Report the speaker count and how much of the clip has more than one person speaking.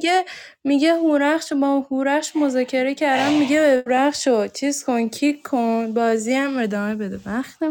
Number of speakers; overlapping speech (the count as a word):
one, no overlap